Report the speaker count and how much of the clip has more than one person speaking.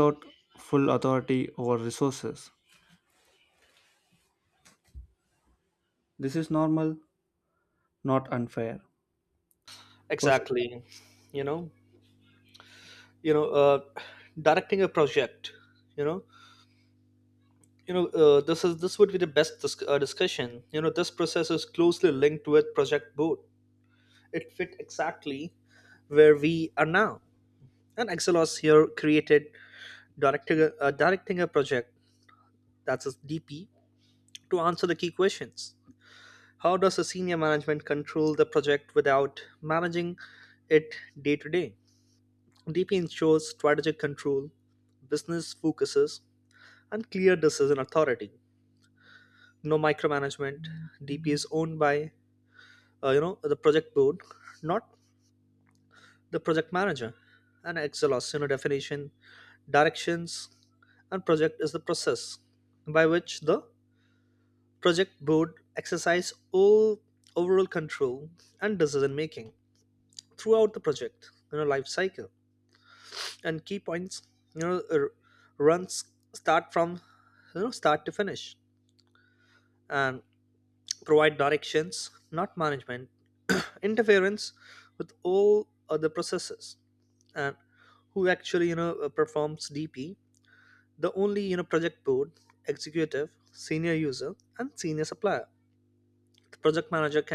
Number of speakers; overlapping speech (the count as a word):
two, under 1%